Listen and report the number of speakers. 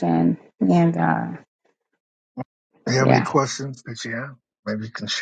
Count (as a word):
two